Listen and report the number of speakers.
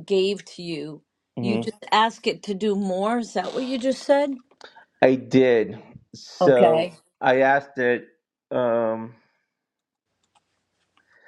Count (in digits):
2